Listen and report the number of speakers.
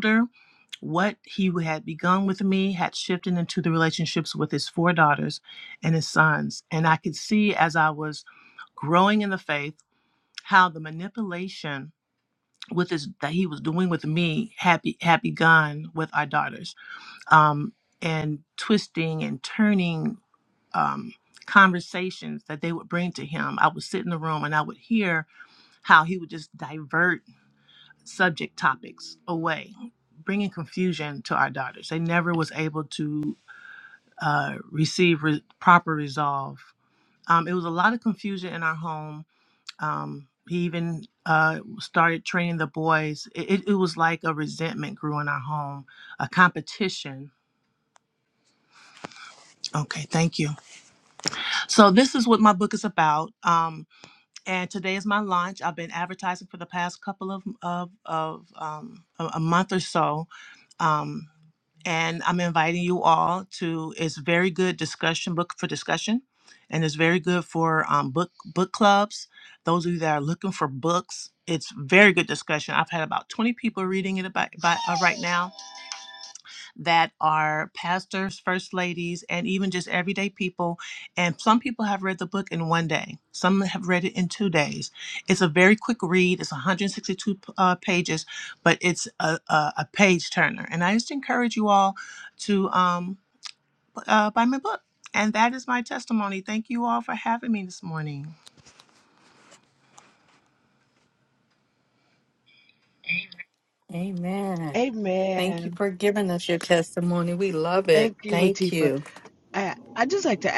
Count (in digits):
3